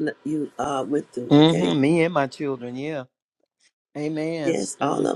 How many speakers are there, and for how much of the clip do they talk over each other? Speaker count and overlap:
2, about 22%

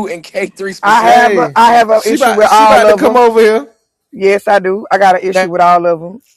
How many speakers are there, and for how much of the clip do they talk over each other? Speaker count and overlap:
3, about 31%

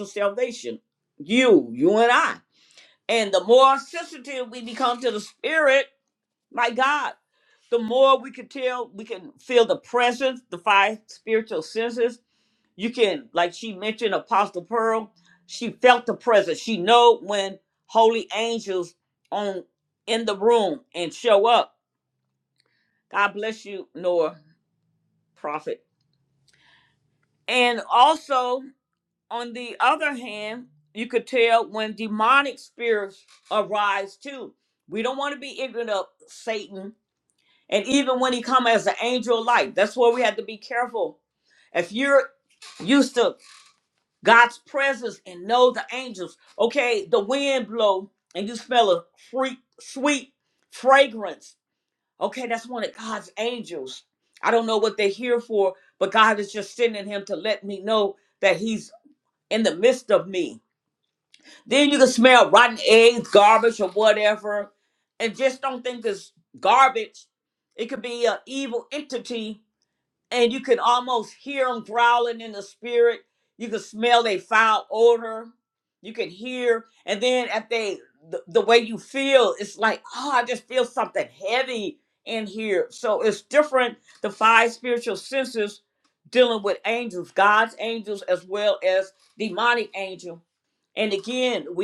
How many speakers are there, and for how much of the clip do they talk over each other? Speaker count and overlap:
1, no overlap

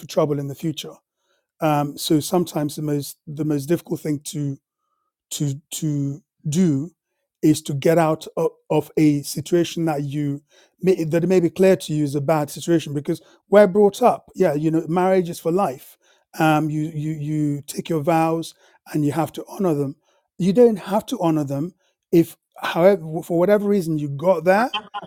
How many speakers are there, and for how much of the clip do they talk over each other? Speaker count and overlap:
1, no overlap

